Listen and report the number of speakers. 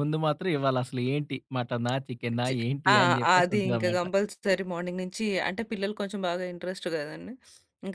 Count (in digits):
2